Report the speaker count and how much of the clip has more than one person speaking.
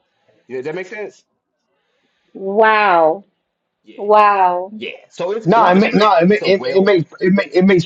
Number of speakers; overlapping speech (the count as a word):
three, about 20%